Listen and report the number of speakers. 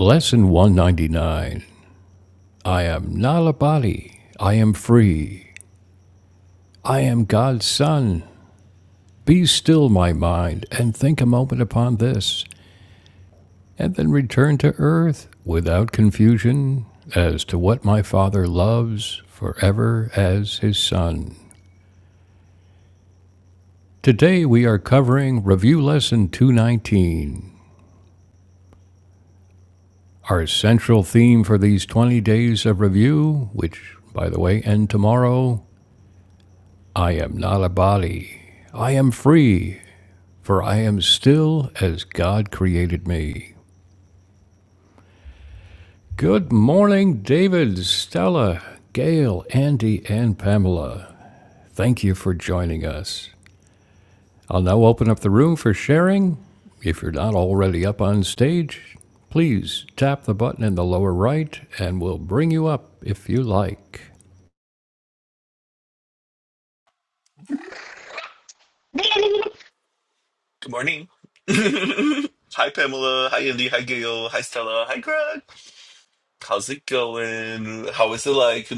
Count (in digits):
2